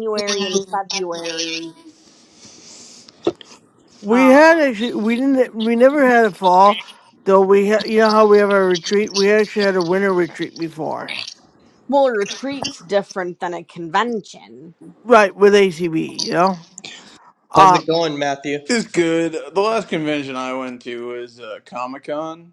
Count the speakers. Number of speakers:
4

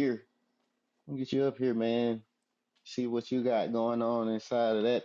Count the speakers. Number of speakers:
1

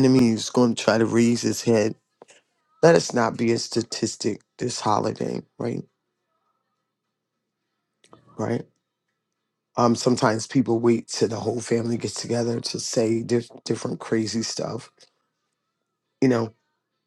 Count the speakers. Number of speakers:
1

